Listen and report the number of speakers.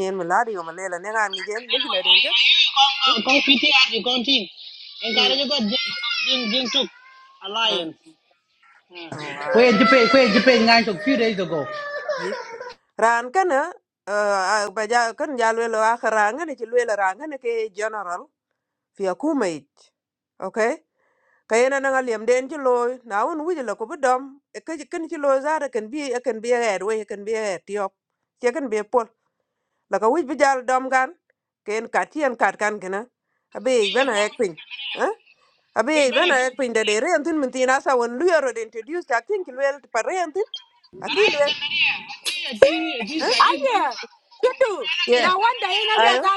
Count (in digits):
3